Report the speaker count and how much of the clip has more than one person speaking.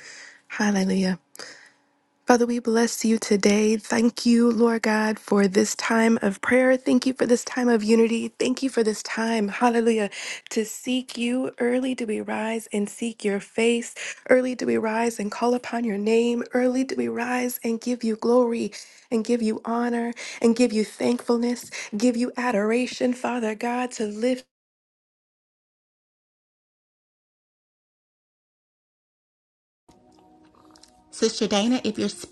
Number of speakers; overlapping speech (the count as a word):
two, no overlap